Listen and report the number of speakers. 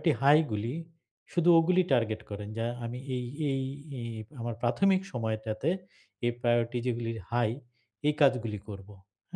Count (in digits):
1